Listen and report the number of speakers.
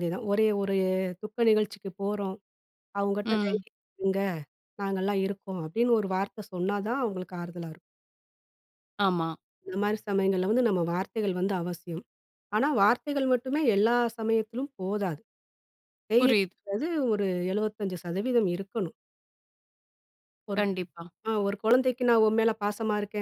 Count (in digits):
2